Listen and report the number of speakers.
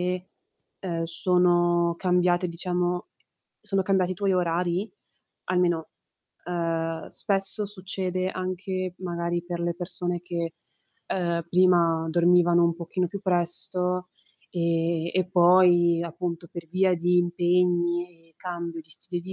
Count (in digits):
1